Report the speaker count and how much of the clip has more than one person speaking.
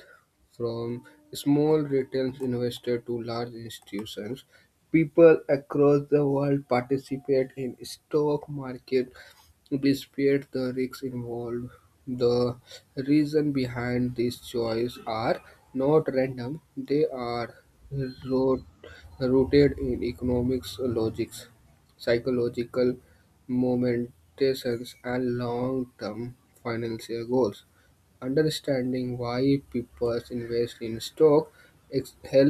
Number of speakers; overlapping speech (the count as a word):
one, no overlap